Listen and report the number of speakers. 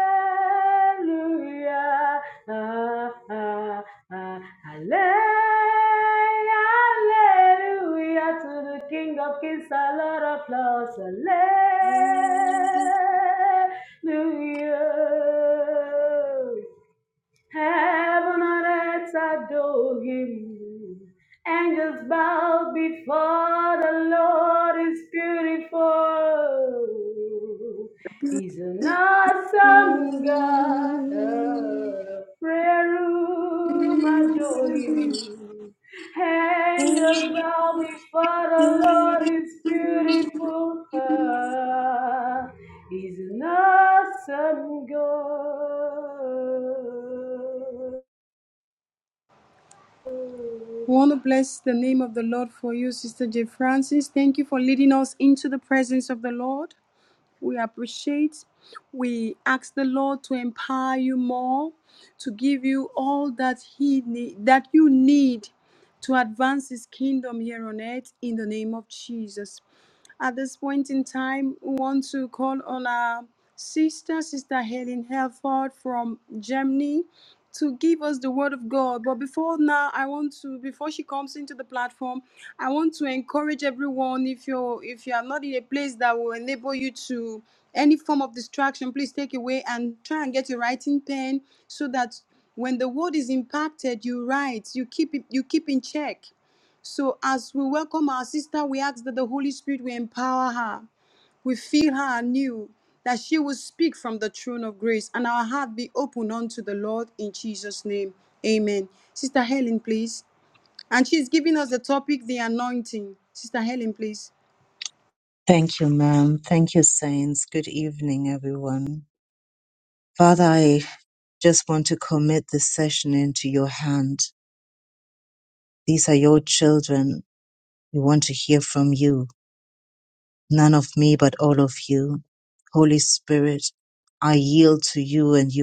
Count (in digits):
3